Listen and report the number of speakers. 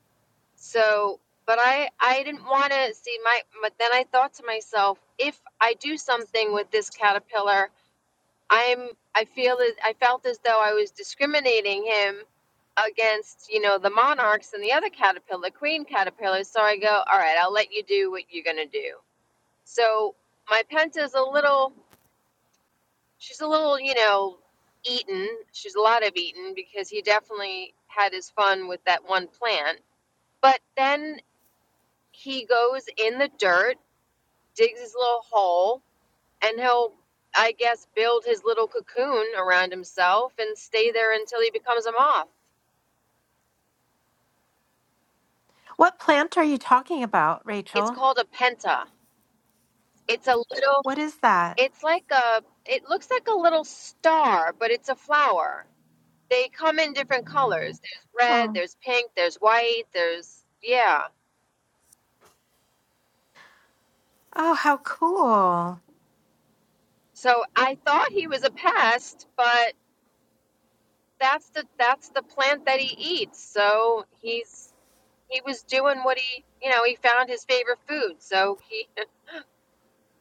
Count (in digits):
2